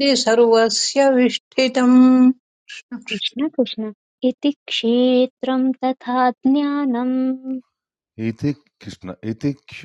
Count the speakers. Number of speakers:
three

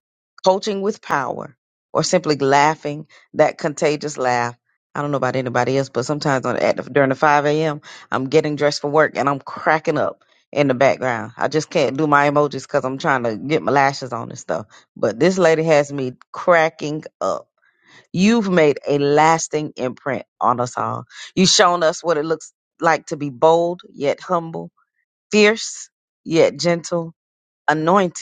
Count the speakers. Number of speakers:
one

